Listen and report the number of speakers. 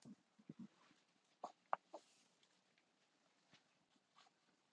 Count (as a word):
zero